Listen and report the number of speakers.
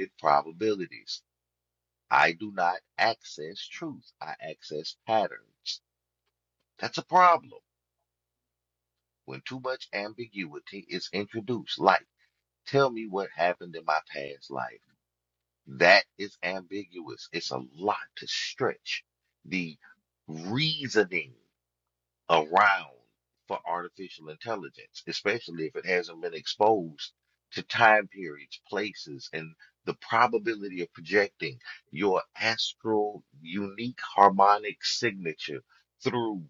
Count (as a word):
one